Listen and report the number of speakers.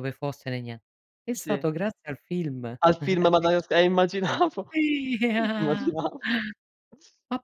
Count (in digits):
2